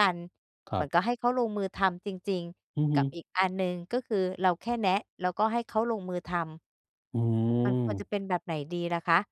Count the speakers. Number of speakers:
two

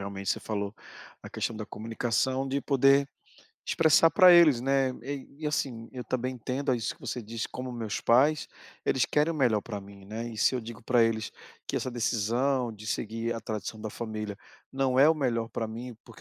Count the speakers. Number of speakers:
one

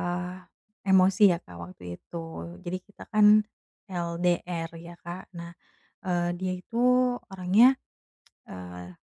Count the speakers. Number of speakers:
one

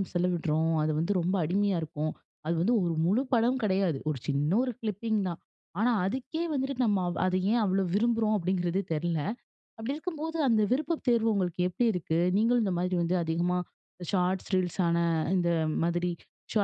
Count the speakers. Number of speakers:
one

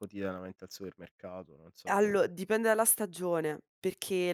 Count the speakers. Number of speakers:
two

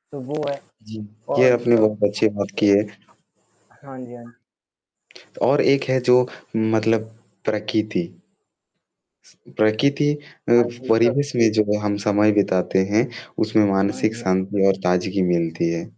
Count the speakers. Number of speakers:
two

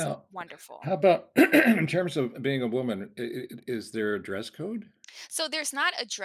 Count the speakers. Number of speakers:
two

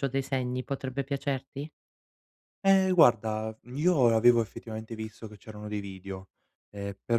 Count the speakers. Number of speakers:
two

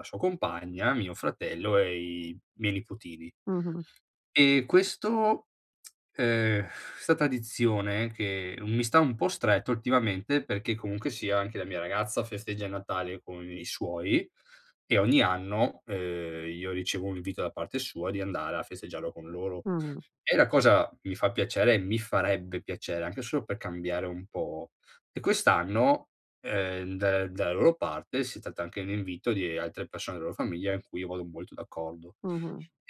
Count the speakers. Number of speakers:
two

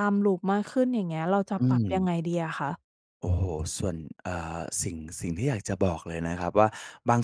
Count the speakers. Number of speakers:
two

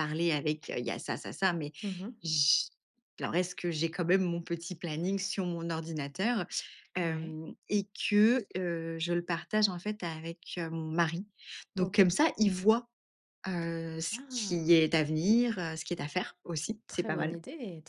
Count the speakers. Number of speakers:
two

